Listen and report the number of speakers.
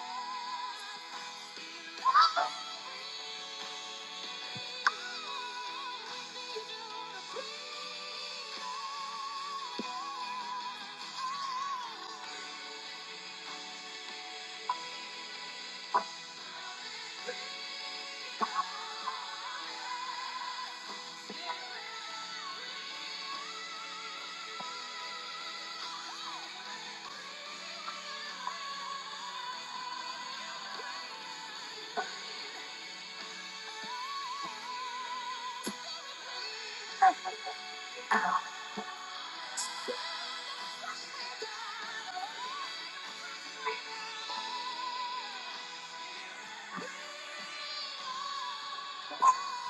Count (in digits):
0